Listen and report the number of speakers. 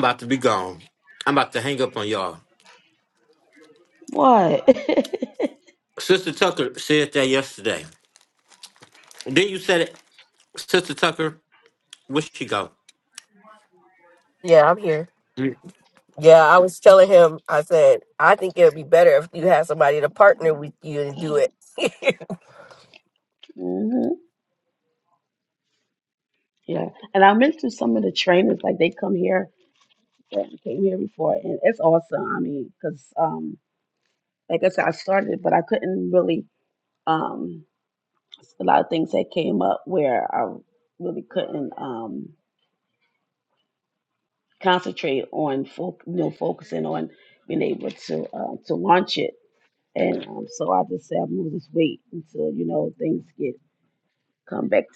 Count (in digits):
3